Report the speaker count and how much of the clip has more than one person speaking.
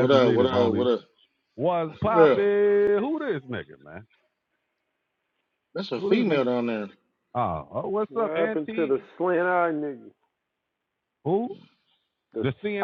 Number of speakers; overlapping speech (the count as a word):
three, about 20%